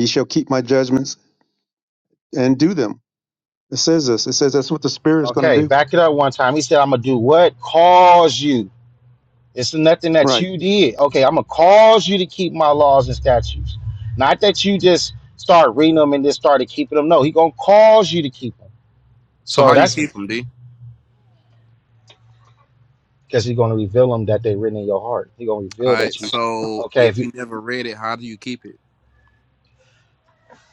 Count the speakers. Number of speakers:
3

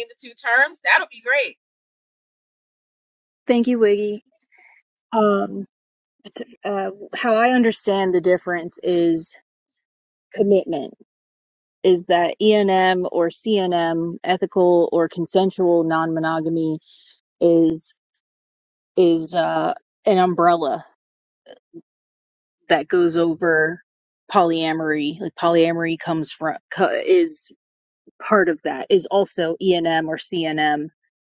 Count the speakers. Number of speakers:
2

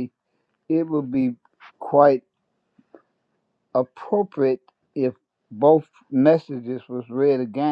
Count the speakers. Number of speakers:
1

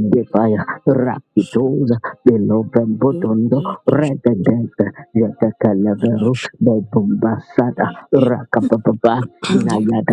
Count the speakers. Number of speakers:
2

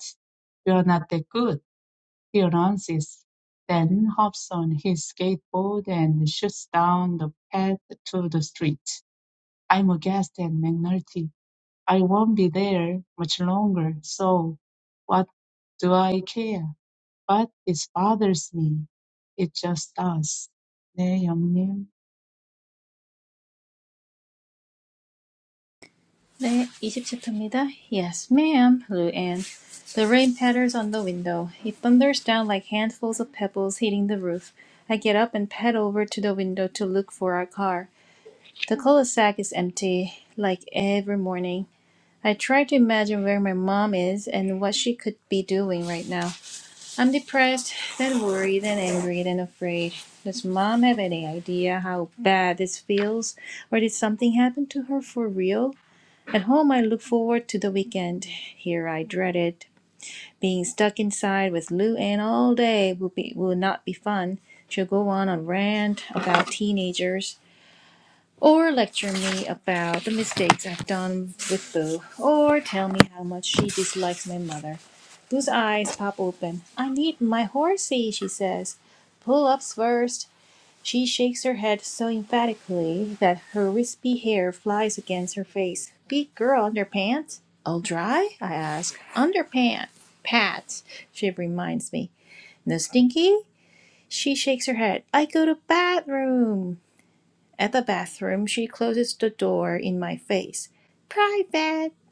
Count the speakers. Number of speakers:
2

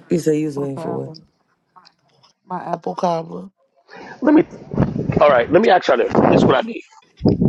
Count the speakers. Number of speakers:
3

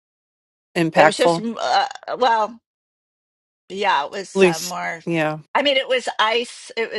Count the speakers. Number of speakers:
2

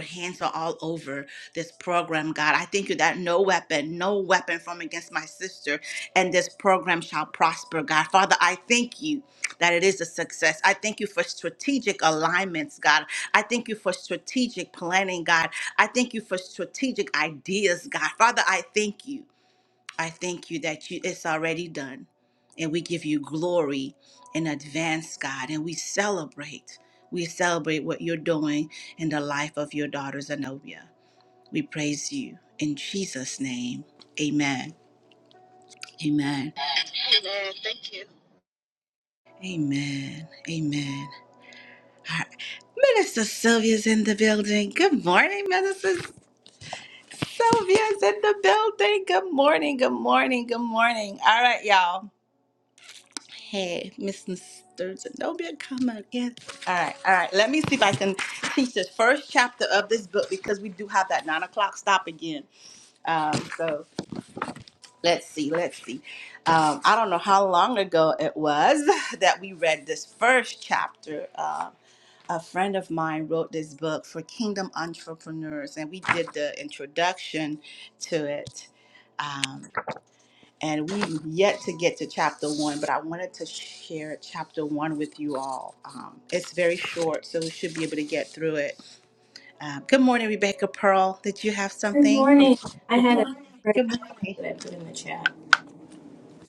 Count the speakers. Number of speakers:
3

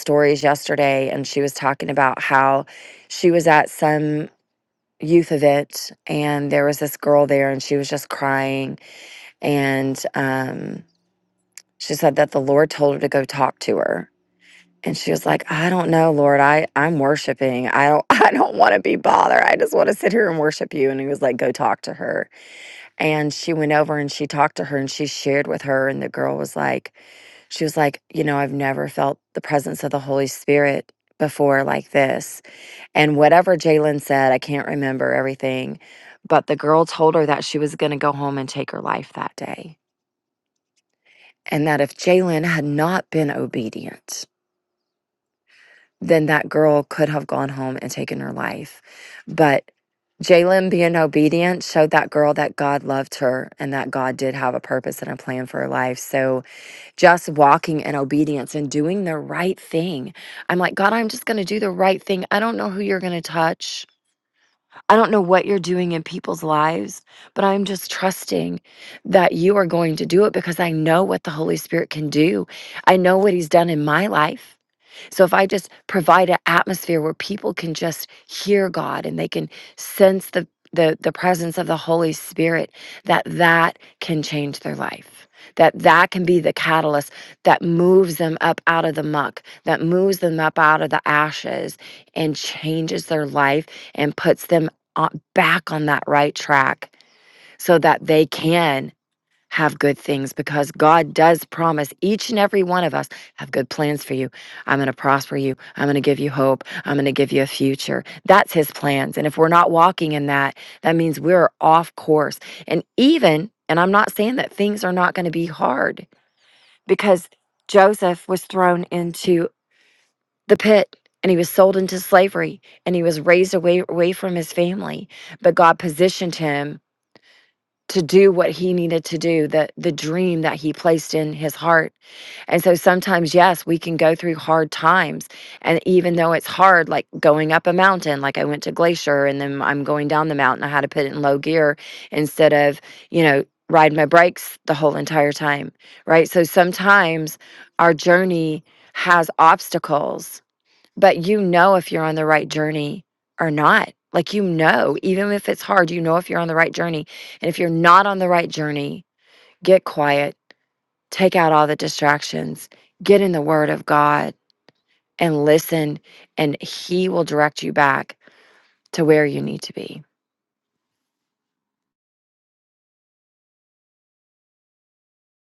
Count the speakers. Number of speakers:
1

